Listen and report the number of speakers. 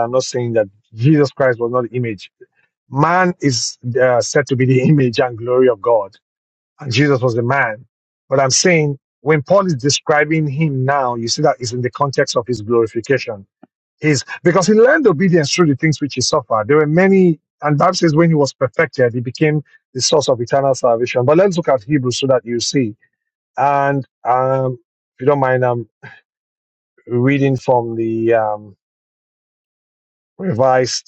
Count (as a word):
one